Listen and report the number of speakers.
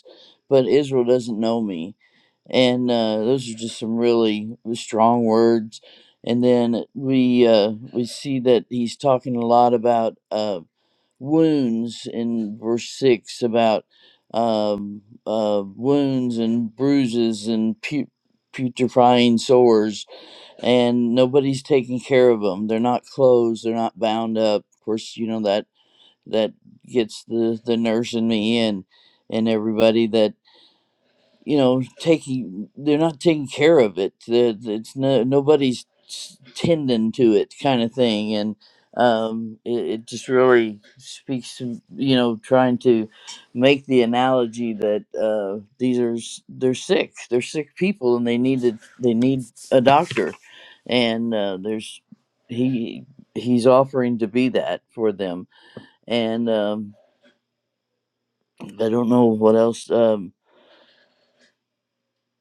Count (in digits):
1